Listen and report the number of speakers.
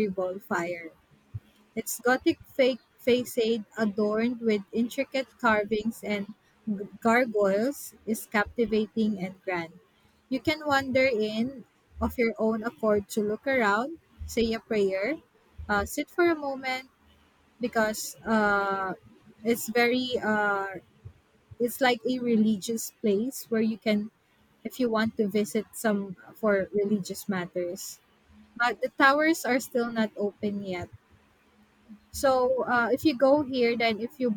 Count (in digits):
1